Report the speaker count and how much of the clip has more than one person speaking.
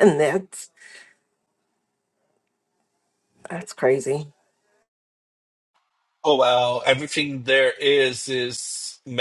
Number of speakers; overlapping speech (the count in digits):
2, no overlap